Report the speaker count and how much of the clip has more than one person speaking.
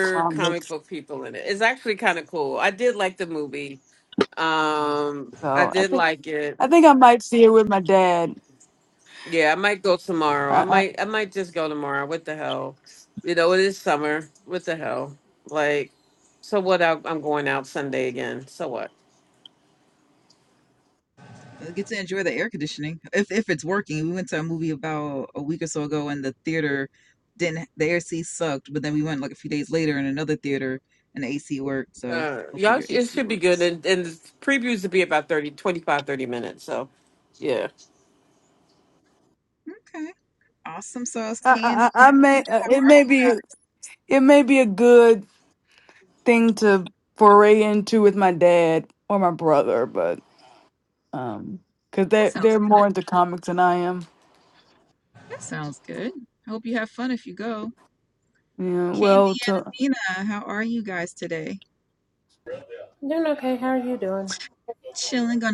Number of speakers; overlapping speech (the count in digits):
4, about 9%